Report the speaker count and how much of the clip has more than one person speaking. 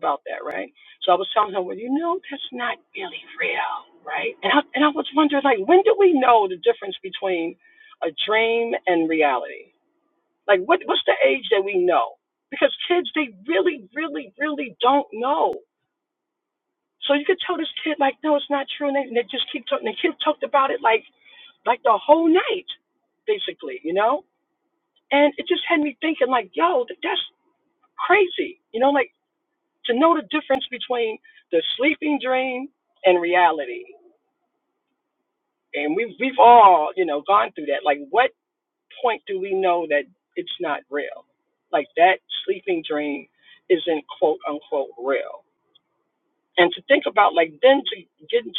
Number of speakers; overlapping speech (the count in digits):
1, no overlap